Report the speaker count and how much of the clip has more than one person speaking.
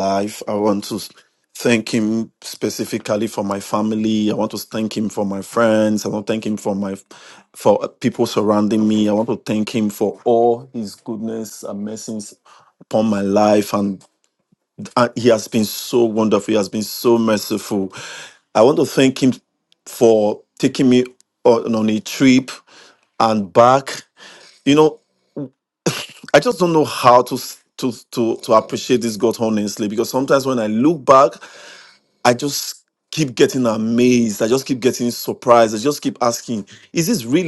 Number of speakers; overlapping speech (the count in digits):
1, no overlap